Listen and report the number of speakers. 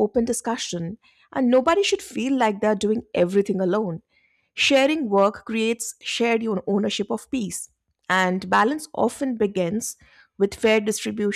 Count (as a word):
one